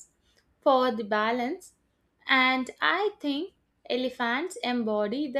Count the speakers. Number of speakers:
1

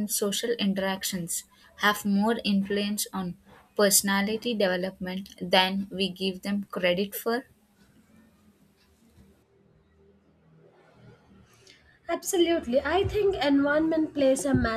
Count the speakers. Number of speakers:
2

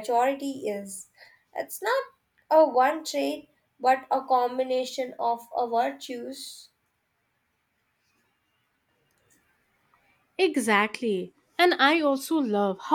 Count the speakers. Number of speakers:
2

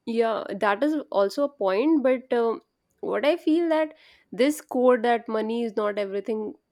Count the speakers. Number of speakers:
1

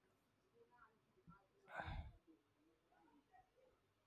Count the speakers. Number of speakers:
0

